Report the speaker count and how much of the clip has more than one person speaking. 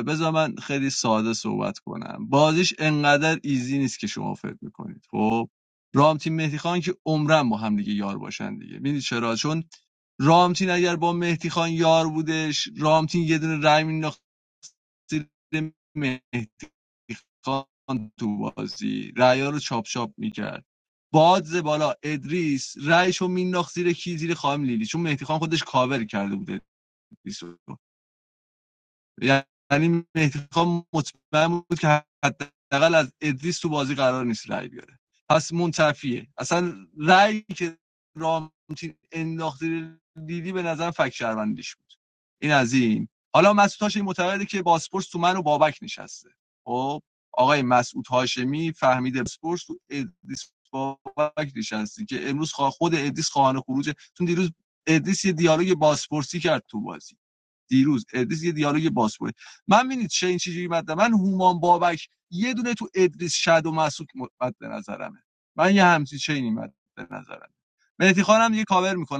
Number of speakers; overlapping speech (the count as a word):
one, no overlap